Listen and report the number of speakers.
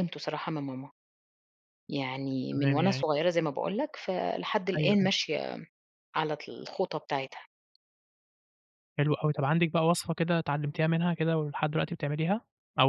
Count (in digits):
2